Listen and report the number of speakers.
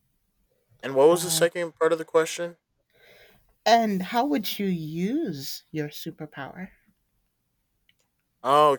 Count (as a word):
two